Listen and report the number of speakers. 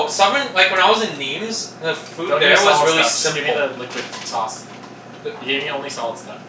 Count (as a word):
two